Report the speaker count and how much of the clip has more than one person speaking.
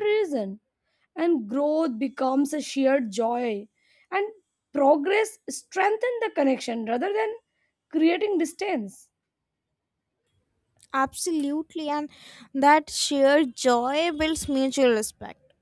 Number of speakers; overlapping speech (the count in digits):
2, no overlap